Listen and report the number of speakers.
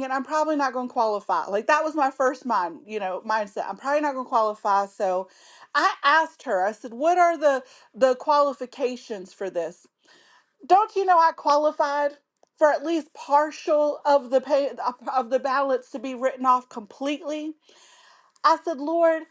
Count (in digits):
1